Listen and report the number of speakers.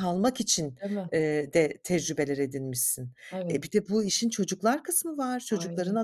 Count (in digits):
2